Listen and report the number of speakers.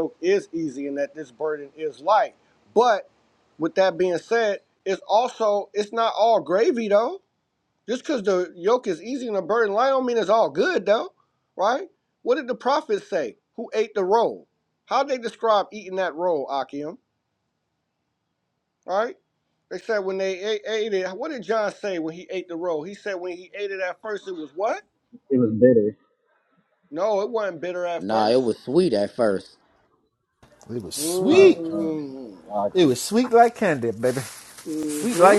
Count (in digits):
4